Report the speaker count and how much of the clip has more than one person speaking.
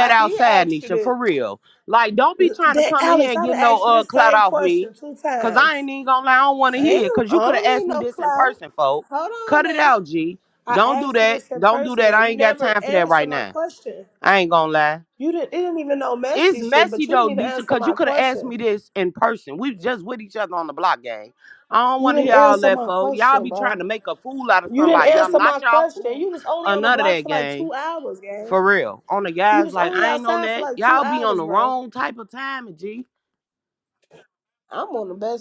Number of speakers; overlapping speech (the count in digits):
2, about 49%